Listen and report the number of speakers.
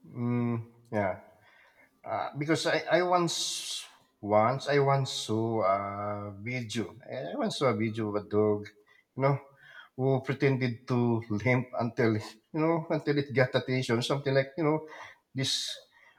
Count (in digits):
1